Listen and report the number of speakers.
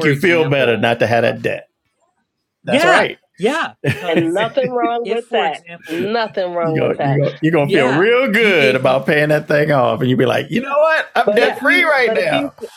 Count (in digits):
3